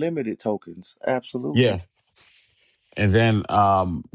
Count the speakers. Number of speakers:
two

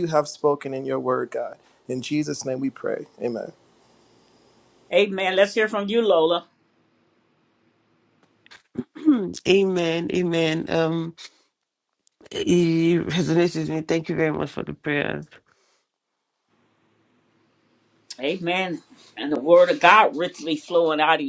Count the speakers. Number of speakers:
three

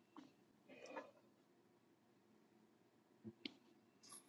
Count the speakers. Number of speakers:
zero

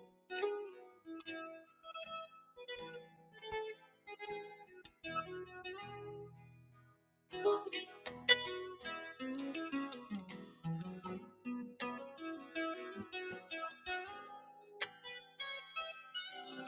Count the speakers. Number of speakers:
zero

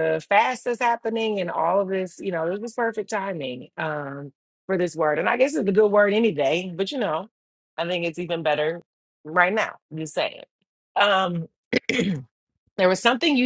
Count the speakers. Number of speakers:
one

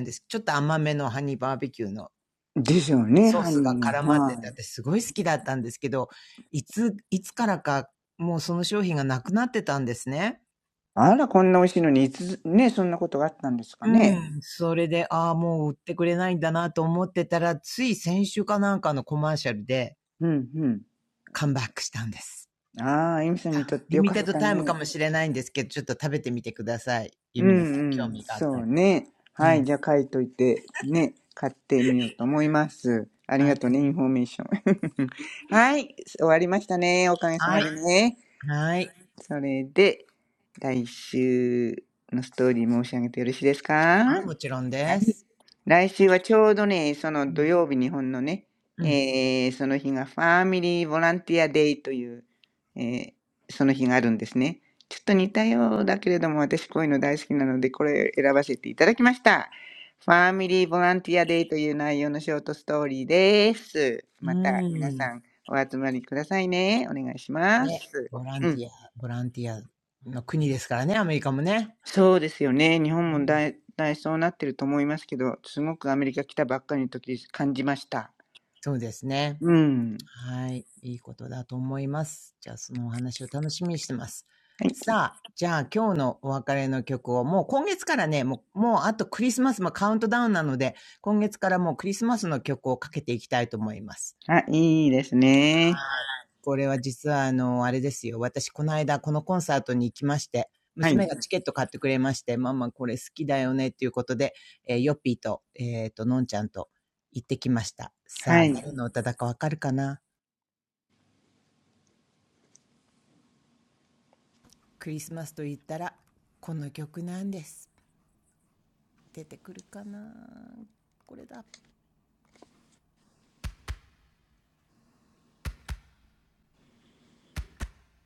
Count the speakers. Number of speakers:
two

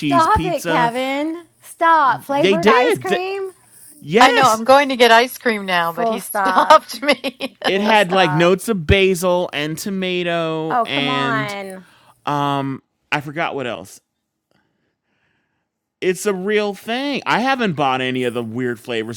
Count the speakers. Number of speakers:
three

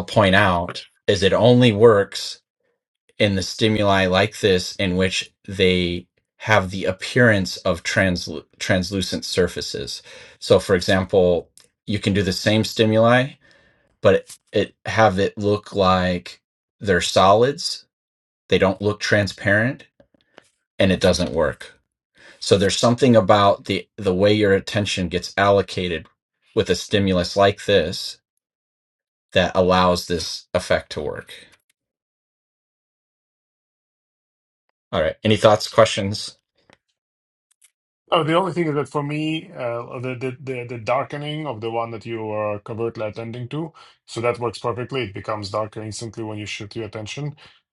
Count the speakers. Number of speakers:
two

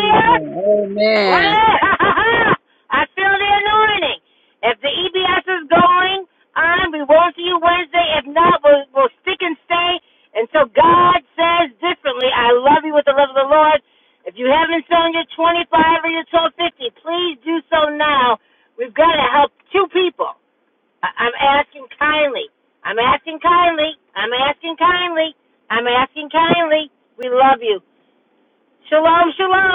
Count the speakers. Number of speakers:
two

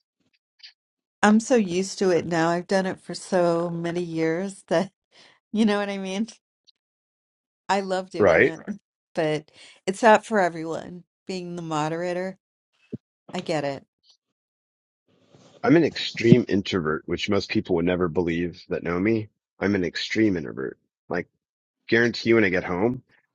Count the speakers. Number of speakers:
two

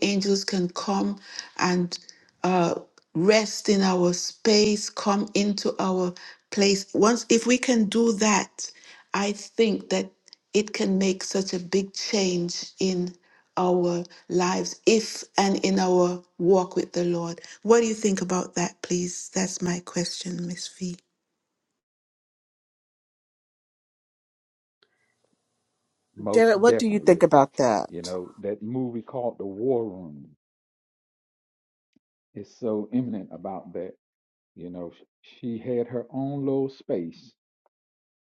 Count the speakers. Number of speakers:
three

